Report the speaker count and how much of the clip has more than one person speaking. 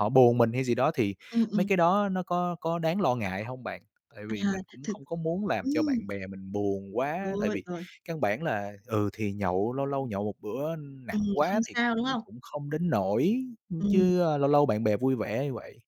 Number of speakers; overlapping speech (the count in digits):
2, about 19%